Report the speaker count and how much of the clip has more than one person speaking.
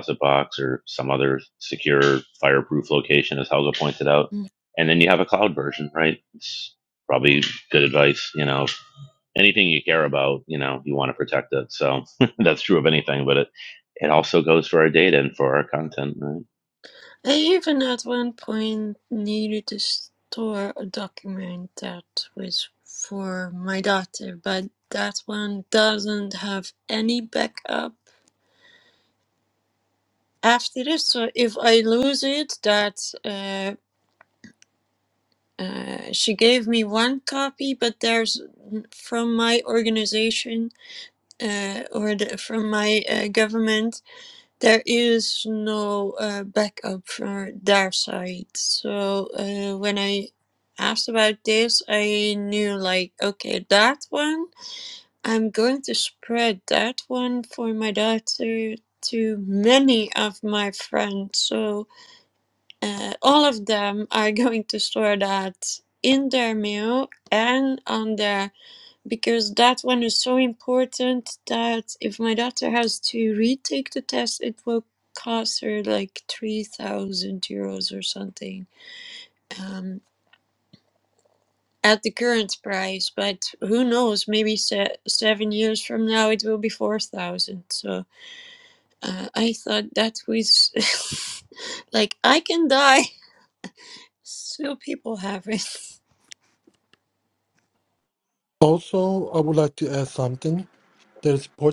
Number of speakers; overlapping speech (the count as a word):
three, no overlap